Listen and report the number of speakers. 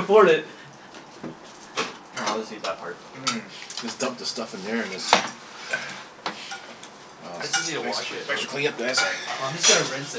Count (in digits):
3